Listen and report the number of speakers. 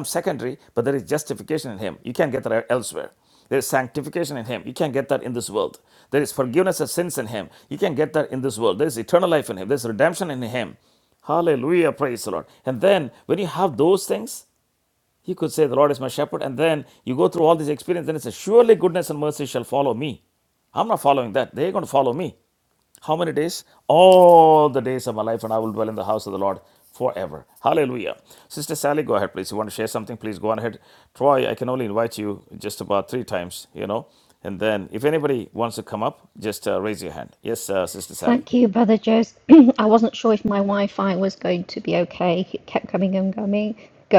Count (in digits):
2